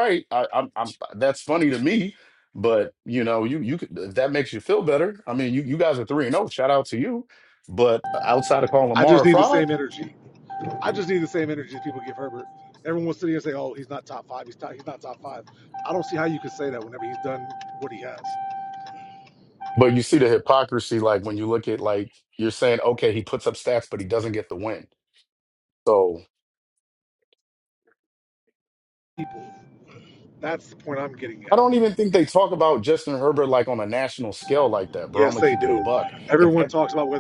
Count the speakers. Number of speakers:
two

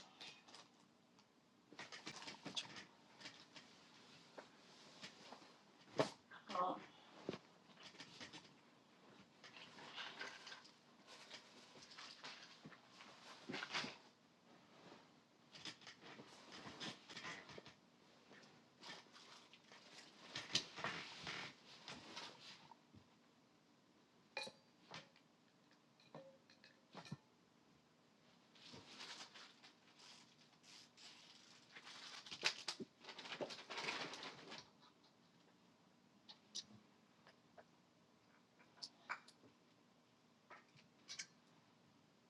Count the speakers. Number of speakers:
zero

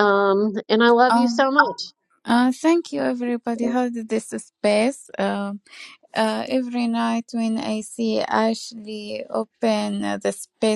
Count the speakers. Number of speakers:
two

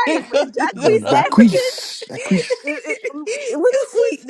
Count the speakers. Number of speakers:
three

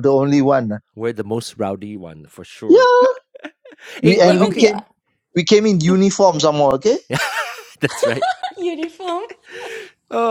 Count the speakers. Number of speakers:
three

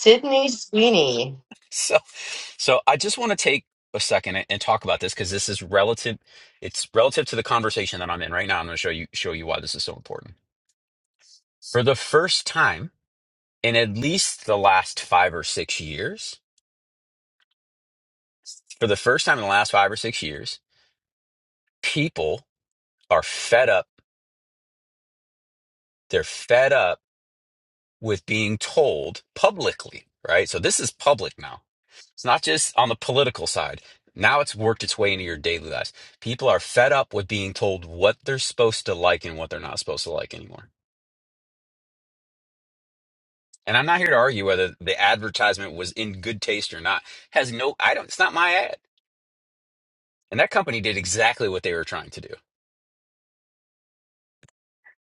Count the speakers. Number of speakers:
two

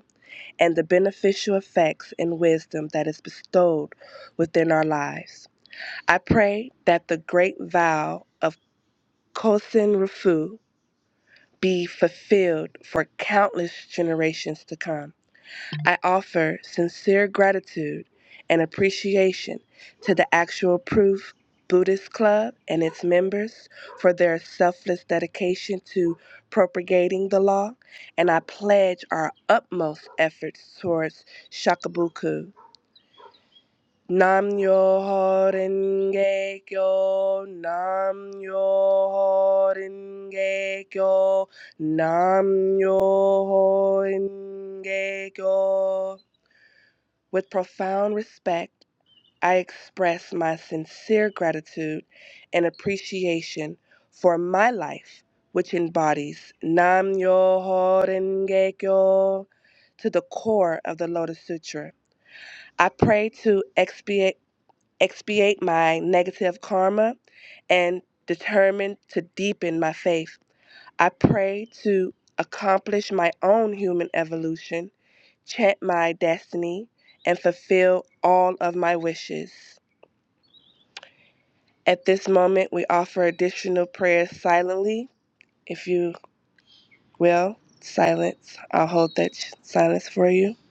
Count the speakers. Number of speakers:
one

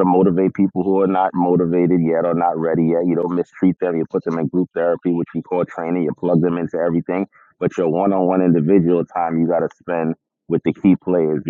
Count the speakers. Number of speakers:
one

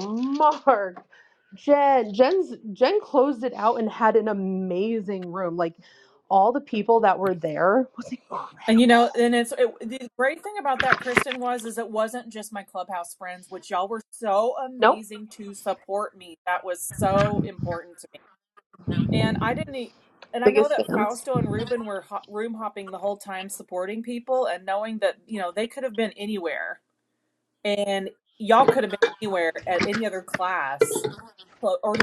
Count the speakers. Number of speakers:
two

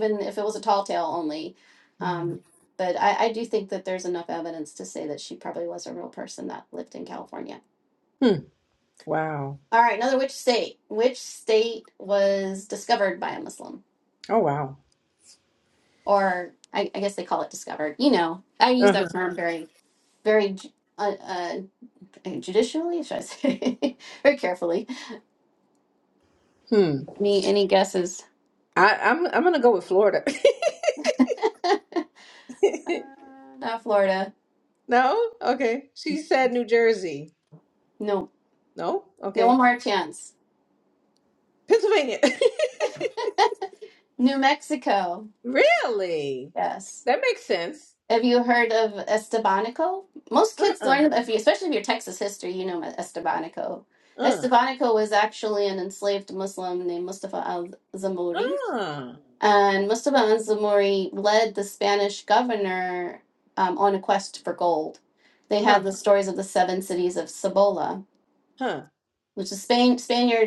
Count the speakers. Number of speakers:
two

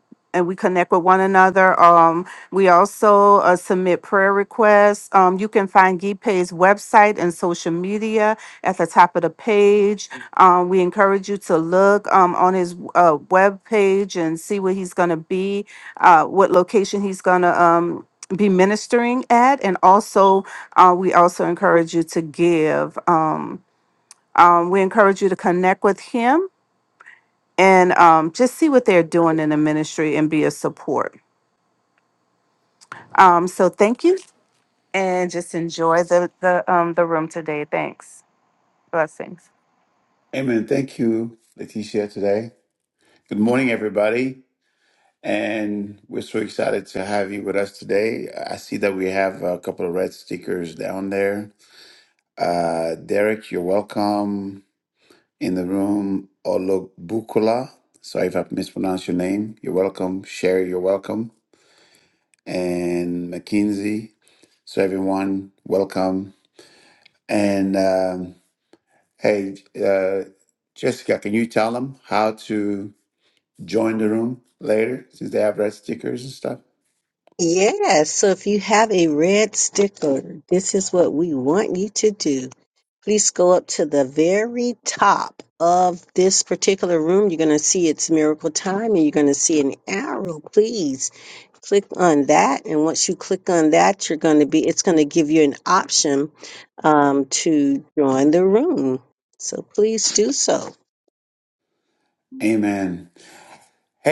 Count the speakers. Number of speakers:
three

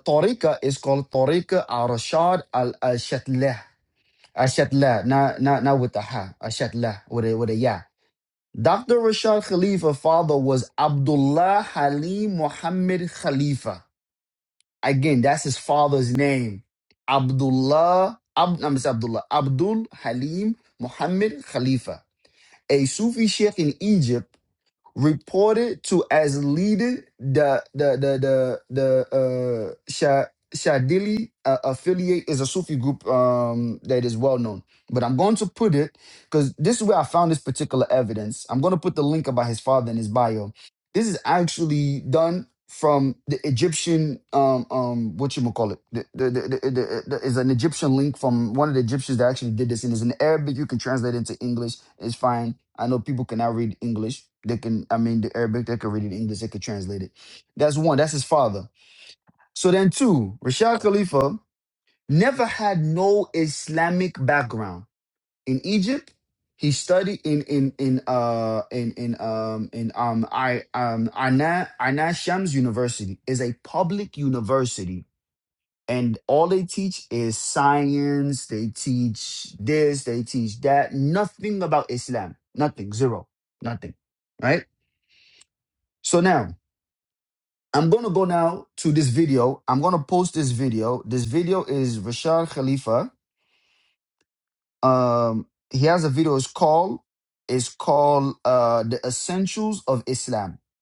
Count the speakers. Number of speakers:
one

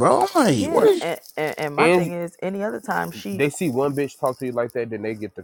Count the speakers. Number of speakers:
three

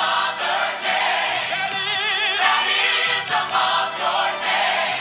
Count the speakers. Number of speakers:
zero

